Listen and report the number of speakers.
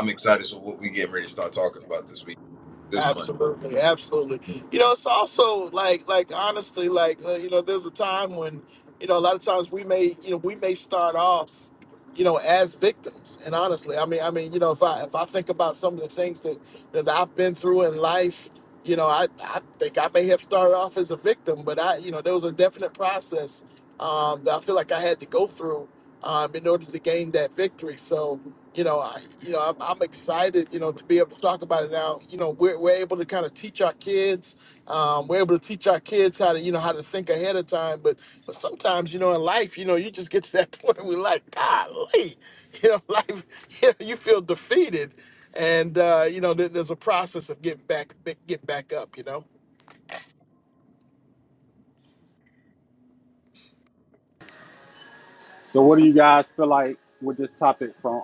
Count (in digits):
3